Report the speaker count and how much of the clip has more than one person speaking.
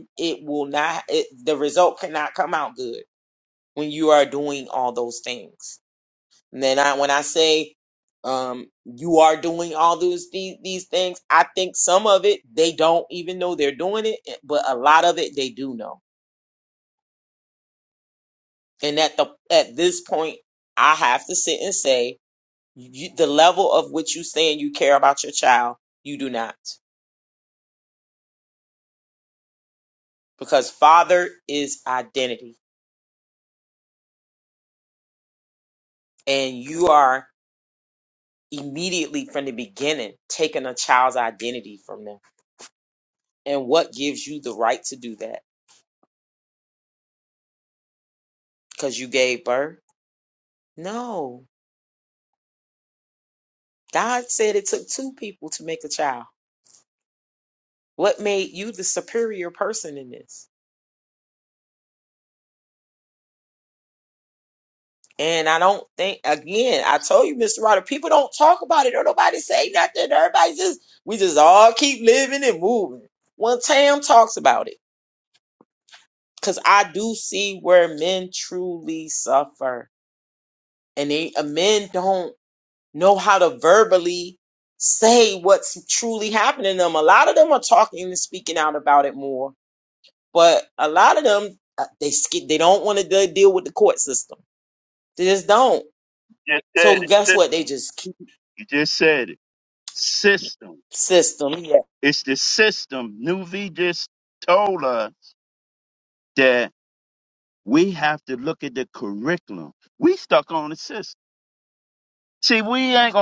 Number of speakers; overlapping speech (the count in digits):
2, about 1%